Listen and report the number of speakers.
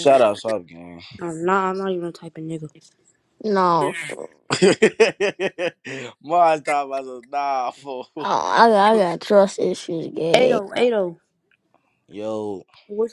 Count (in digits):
3